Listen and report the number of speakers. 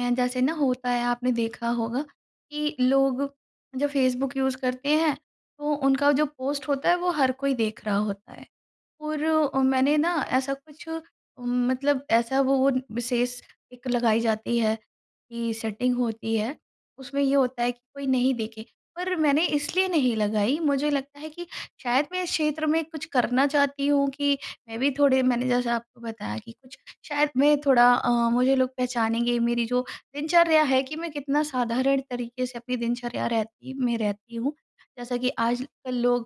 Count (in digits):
1